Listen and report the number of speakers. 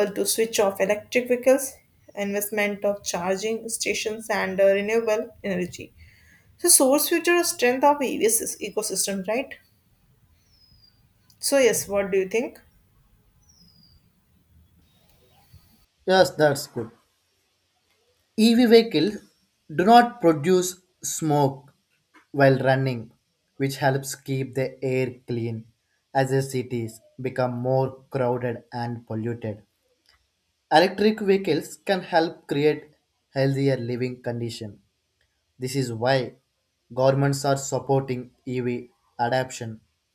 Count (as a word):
two